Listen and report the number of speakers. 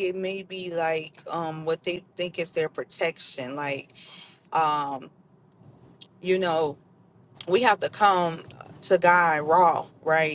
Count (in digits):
1